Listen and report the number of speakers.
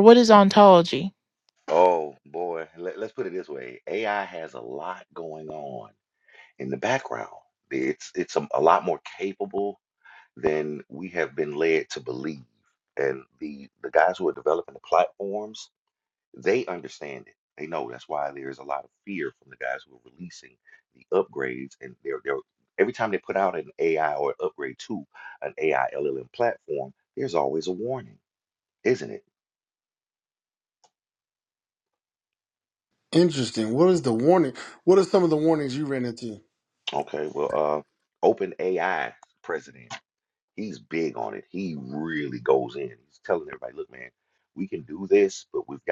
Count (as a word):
three